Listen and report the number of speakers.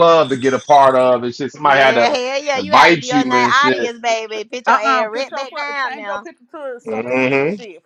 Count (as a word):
three